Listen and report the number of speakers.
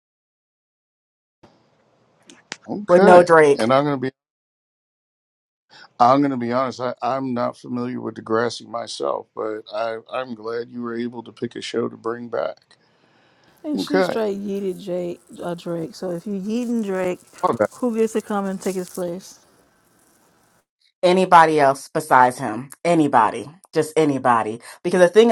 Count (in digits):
3